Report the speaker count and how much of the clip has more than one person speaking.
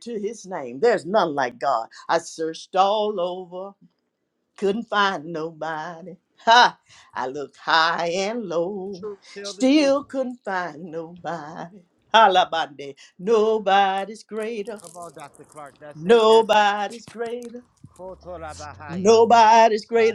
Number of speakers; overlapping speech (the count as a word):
two, about 8%